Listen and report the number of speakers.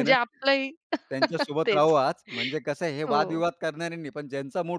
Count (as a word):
two